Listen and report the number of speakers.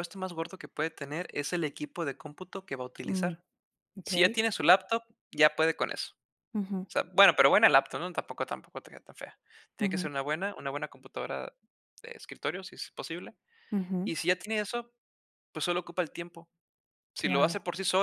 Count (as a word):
two